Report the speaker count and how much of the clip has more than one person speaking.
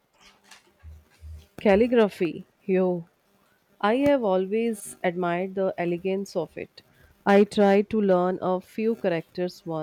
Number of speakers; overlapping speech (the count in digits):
1, no overlap